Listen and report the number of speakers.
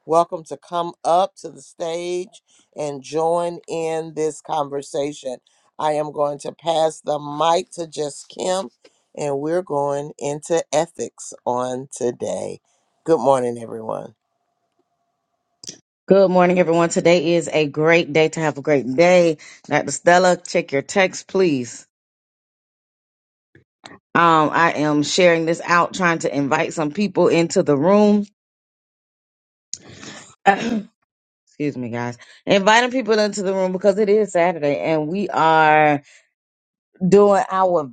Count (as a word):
two